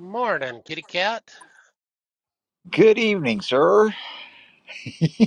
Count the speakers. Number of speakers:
two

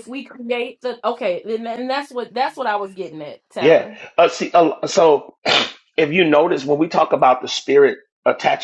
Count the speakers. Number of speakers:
two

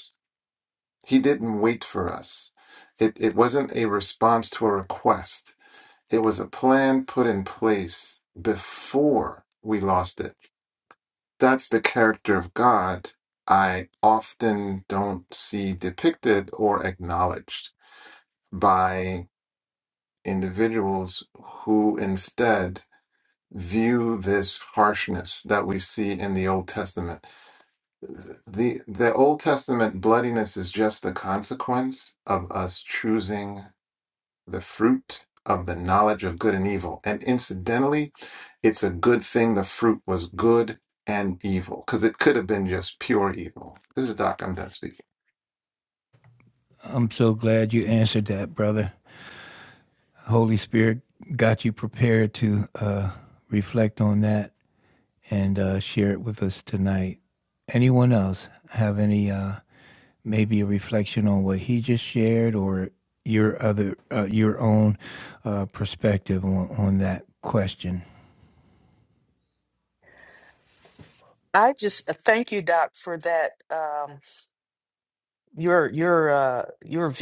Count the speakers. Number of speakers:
three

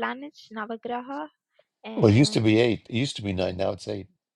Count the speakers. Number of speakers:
two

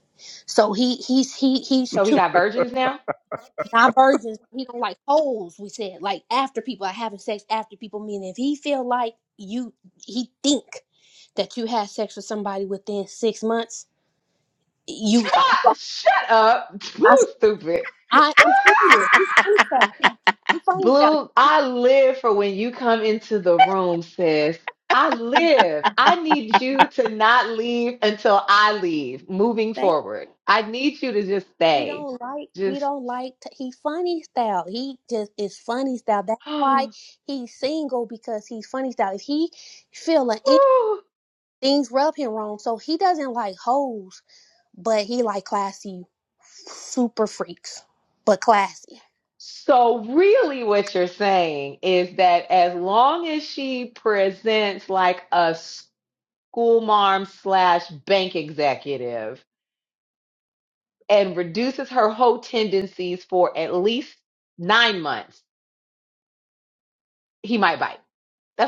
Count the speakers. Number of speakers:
two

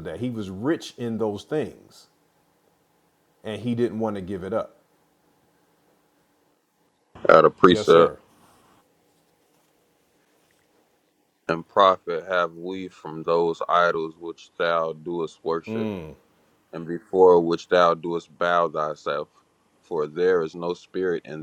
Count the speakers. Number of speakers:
two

